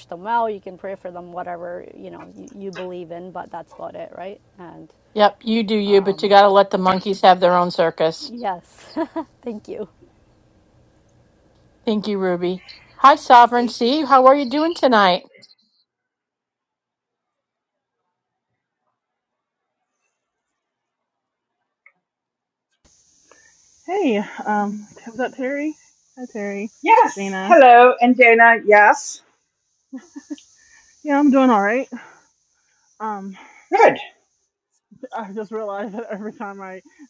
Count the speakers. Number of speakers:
4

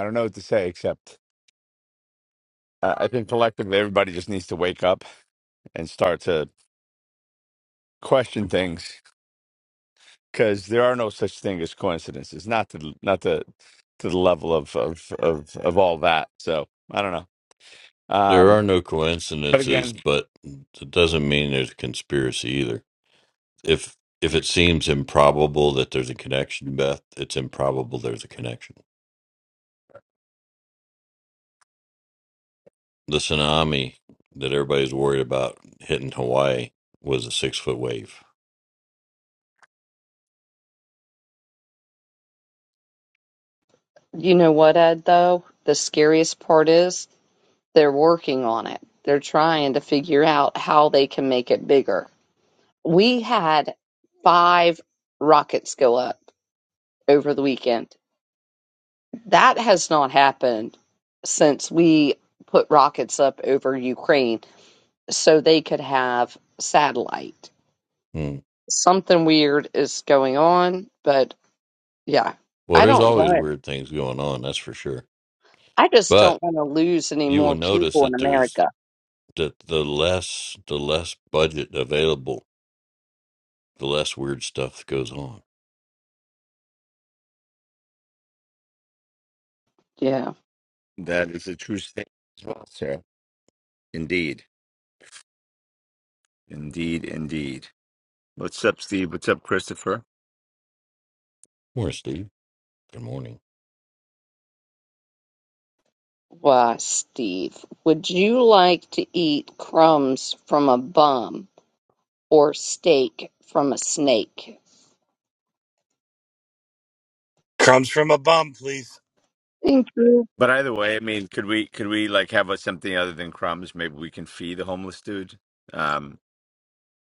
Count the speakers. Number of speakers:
4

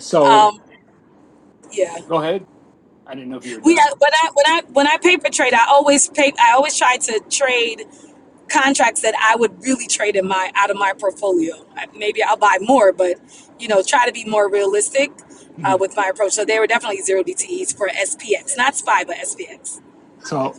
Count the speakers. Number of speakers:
2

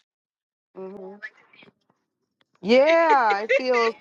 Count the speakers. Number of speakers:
1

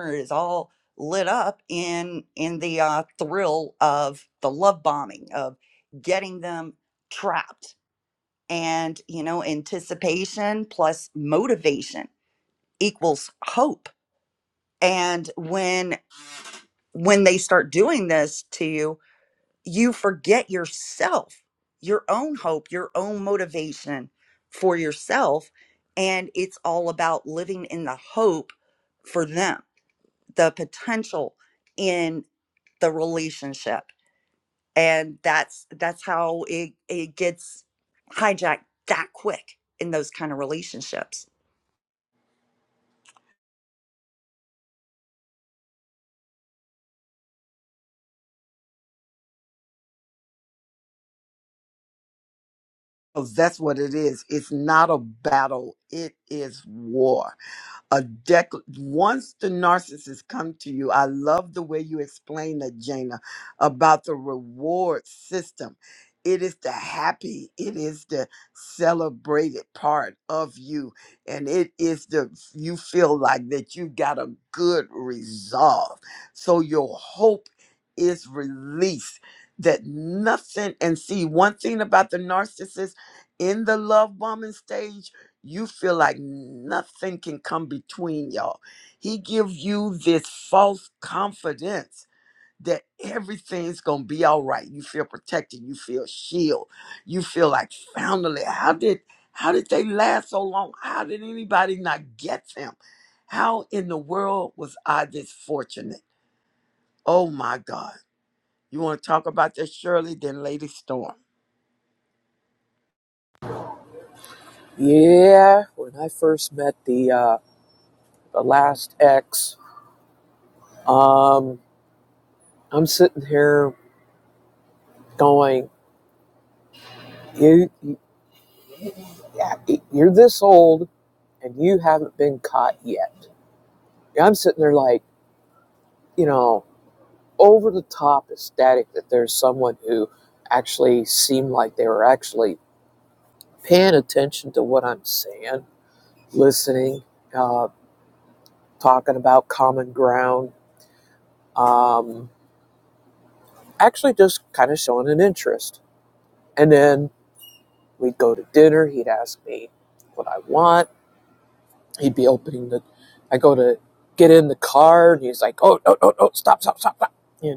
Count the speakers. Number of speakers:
3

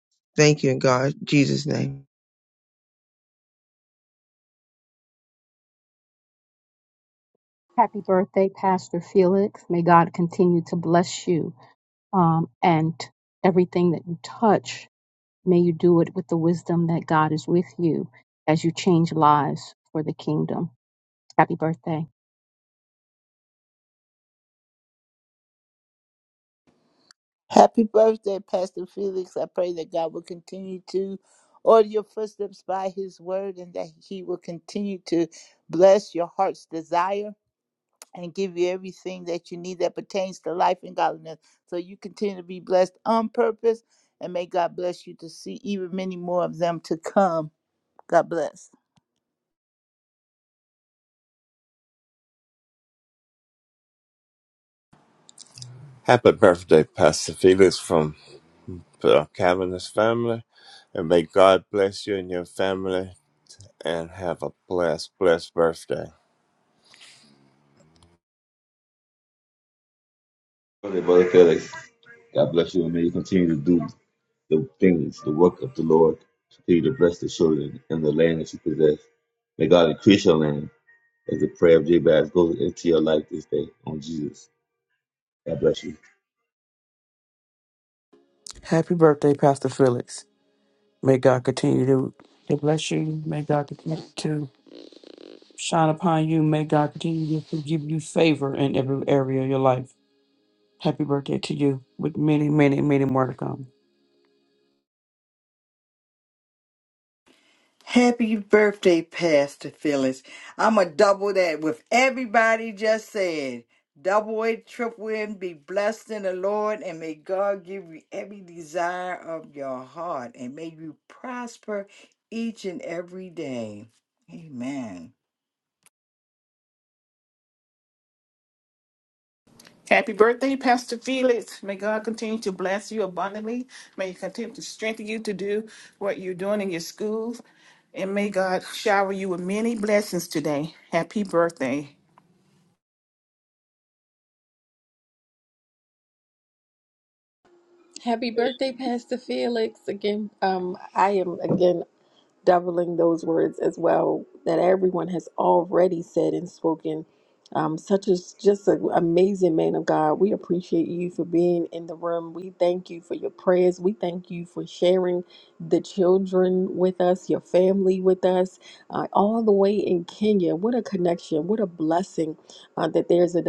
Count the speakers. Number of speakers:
9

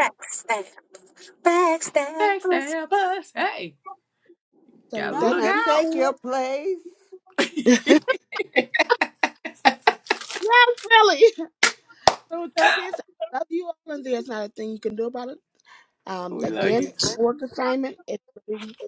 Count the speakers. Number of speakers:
4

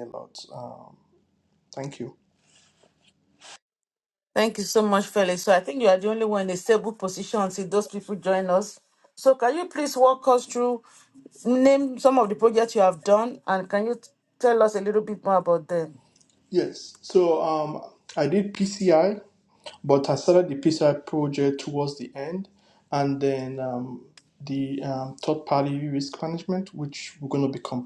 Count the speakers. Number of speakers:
2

